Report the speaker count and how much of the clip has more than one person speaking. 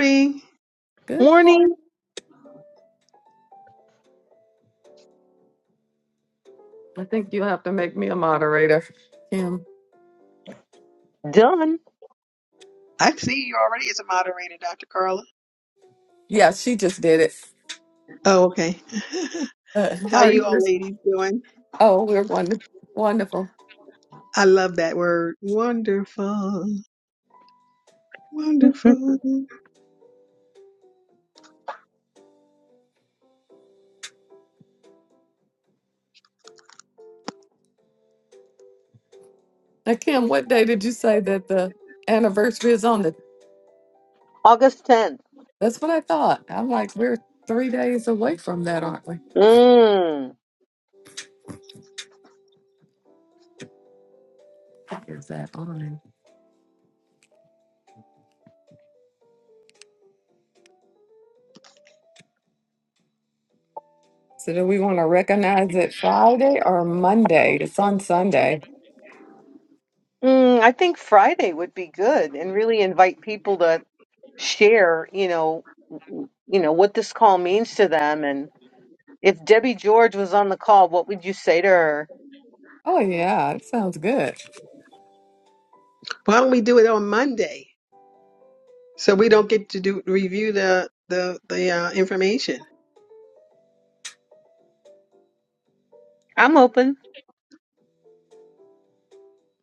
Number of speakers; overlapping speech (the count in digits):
3, about 1%